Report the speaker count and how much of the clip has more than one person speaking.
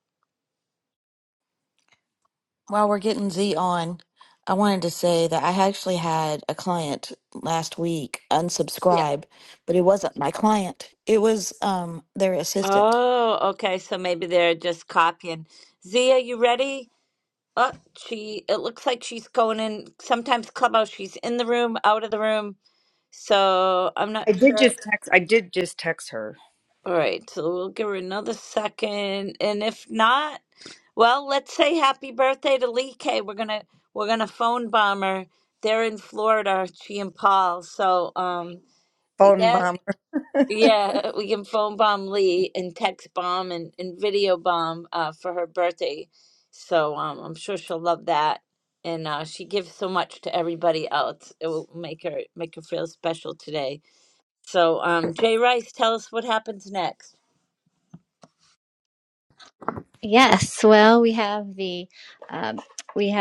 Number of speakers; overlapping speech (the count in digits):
4, about 2%